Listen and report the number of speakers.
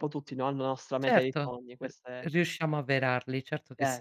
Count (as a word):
two